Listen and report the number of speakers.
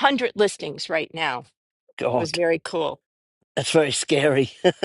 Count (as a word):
two